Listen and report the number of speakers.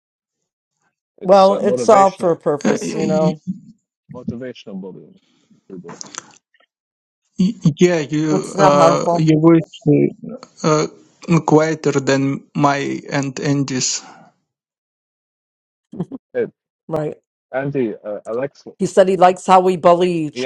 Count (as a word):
three